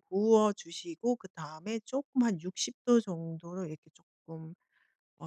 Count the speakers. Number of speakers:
1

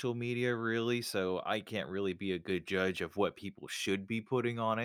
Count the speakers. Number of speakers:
1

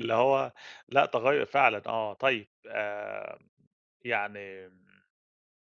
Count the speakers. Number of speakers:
1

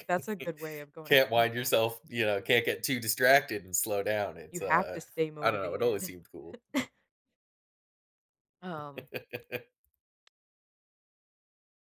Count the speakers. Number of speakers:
2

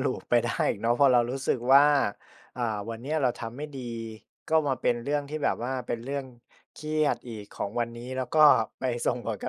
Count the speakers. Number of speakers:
1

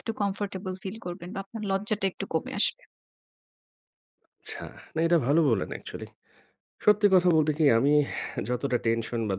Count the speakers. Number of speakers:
2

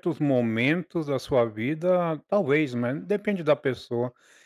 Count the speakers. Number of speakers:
1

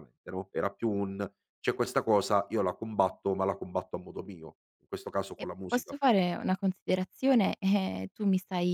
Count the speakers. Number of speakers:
2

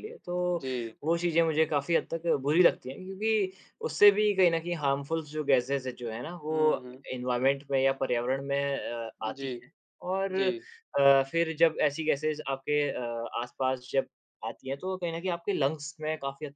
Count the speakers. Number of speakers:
2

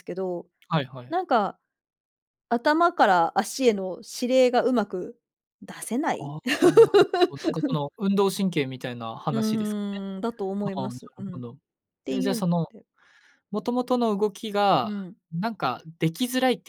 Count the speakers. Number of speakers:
2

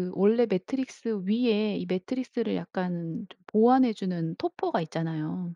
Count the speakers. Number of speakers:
1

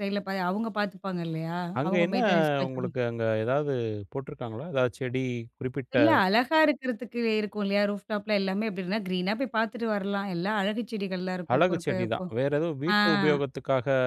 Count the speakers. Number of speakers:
2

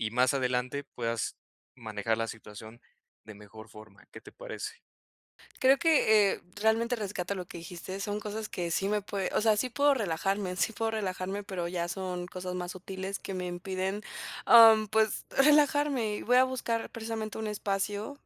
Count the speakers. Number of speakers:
2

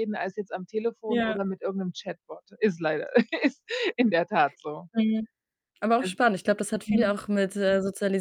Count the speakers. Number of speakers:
2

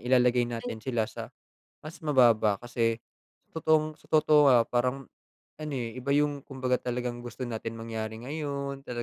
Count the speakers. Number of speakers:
1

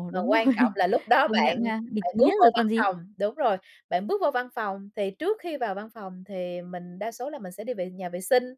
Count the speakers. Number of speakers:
2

